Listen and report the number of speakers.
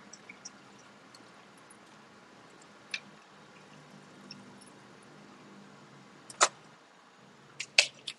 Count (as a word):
zero